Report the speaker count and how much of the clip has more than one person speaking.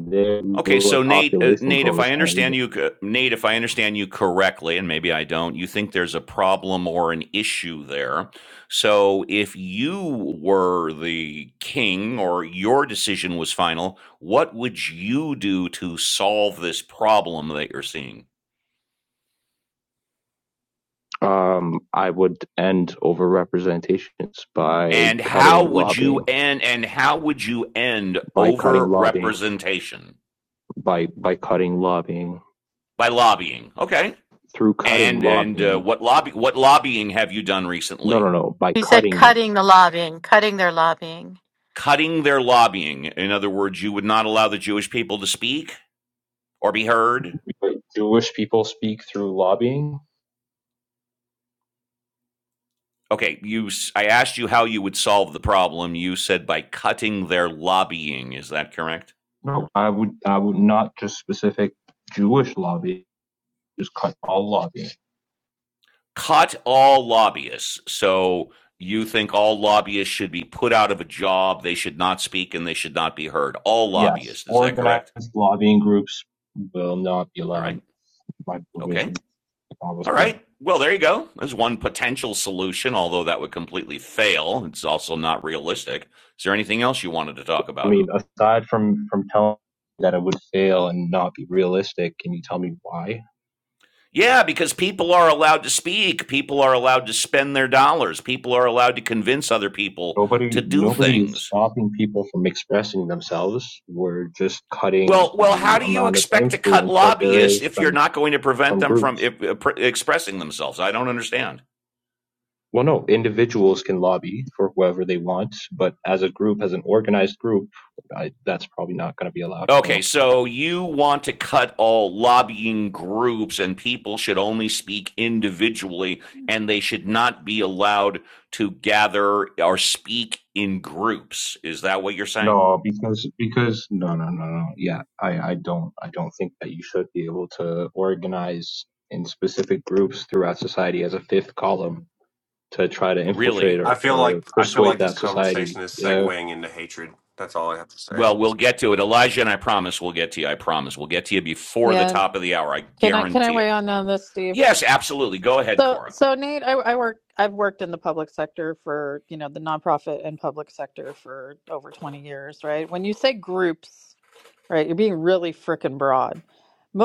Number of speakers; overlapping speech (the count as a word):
five, about 11%